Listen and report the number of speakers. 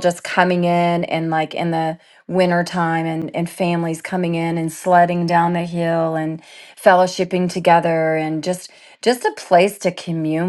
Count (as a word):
one